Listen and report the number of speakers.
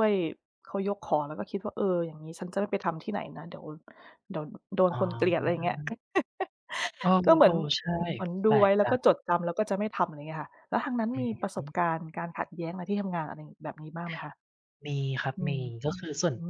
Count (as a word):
two